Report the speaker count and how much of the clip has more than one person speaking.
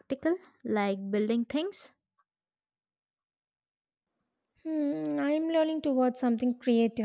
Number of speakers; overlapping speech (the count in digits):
2, no overlap